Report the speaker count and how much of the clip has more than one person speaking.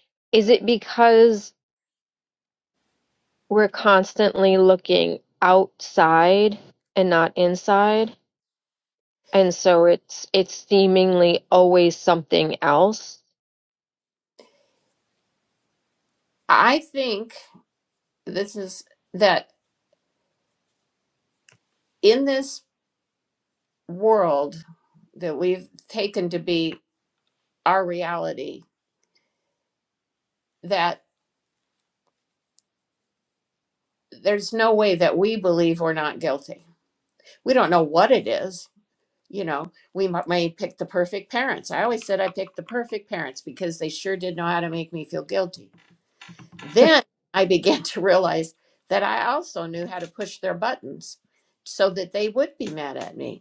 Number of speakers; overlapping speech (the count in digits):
2, no overlap